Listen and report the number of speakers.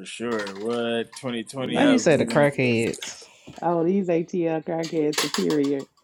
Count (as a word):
three